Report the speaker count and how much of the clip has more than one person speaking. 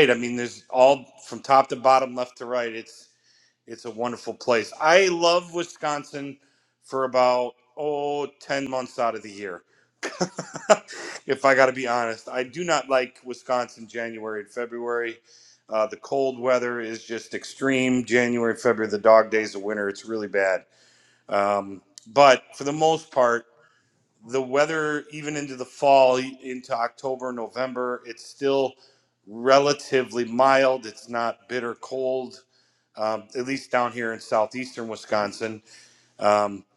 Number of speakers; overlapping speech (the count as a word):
one, no overlap